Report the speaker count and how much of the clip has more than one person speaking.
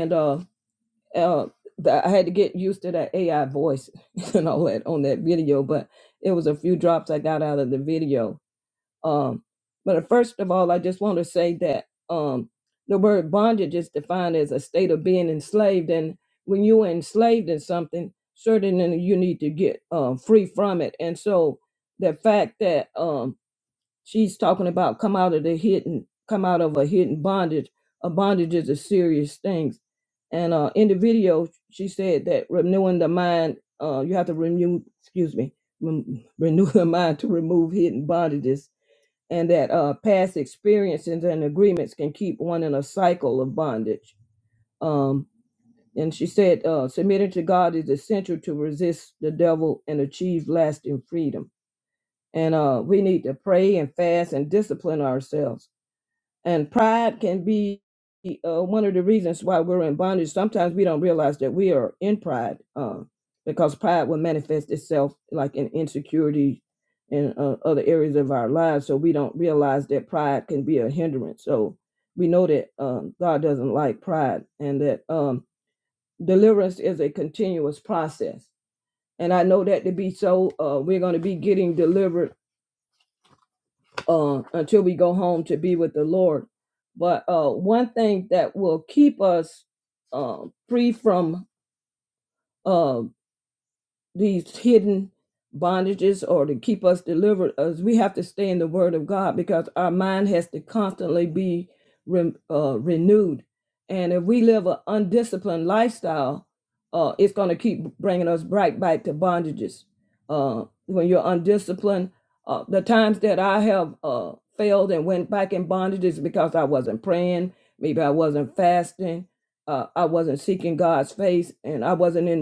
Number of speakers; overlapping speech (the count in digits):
1, no overlap